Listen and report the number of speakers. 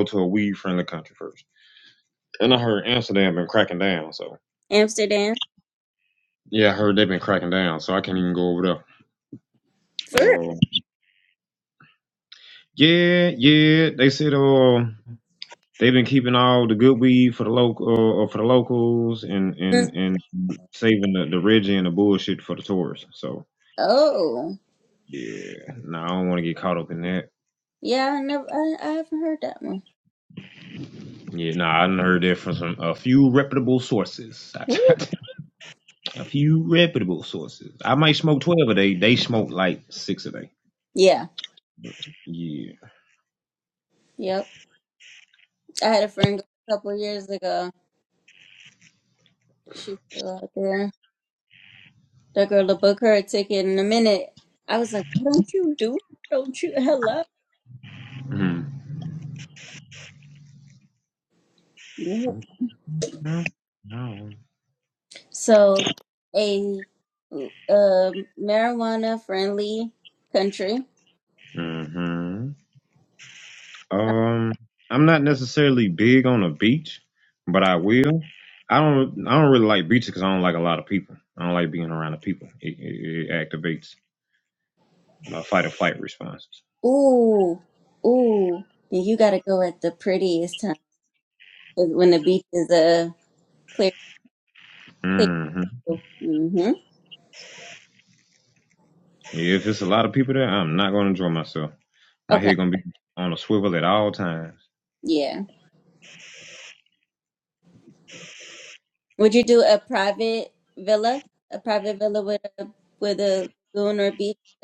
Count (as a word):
two